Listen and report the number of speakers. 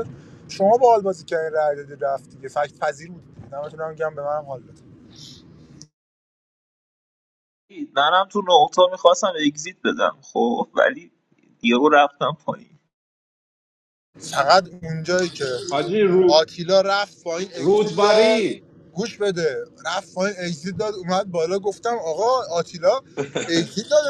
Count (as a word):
three